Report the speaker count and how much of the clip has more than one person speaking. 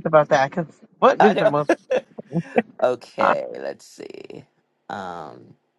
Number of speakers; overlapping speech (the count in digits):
2, about 9%